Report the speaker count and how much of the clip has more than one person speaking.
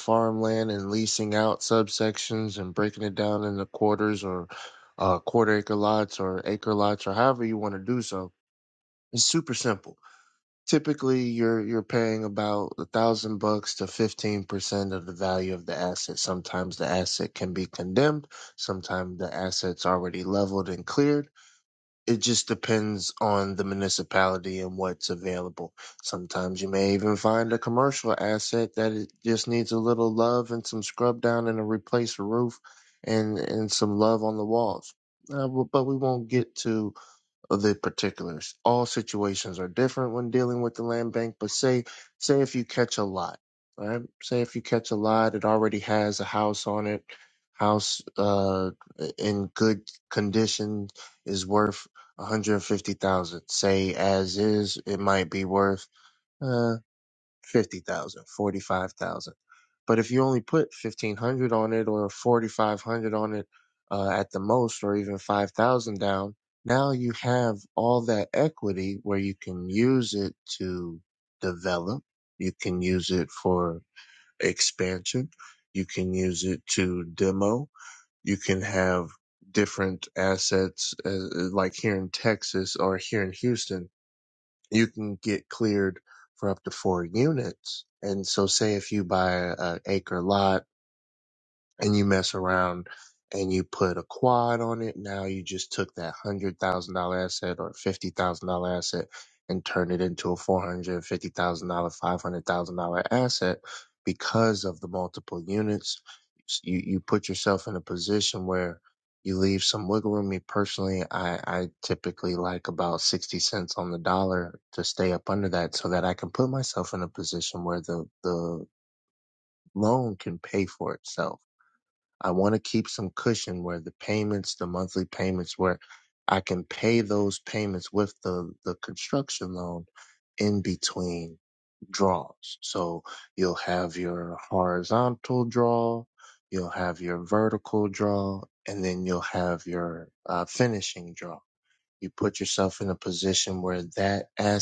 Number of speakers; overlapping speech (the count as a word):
one, no overlap